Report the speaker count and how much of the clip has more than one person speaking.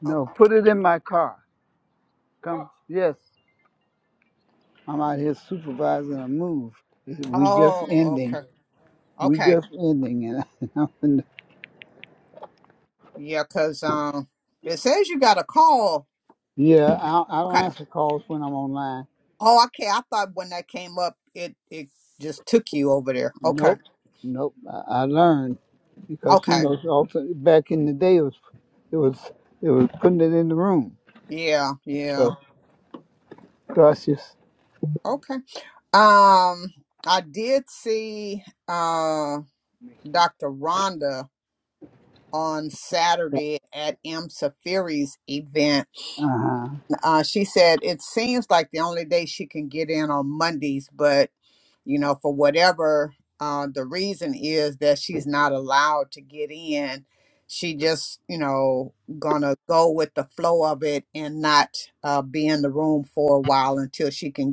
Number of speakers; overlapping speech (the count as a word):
two, about 4%